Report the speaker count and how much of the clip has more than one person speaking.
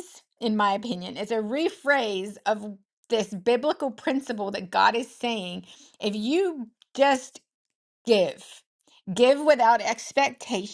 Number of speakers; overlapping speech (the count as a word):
one, no overlap